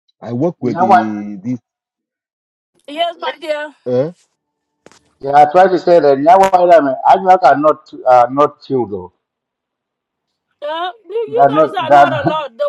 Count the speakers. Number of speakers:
3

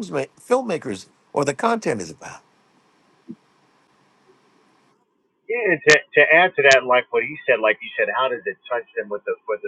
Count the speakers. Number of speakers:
2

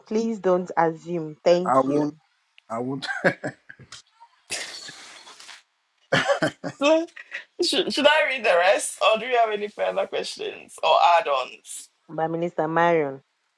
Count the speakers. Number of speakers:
3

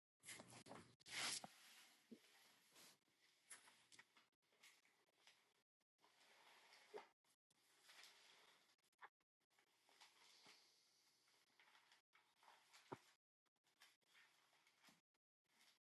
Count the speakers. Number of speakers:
0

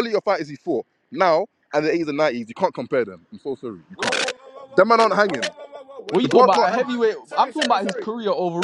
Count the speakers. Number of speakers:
3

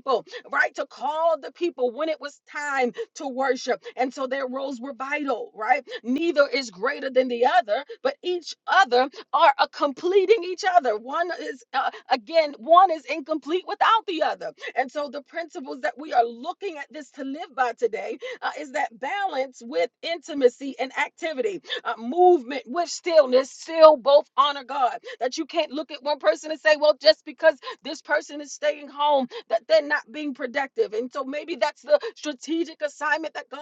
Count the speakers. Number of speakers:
1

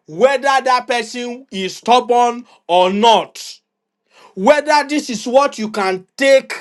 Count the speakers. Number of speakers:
1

